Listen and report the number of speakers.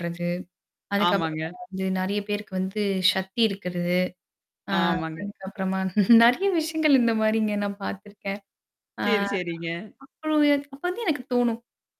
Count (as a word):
two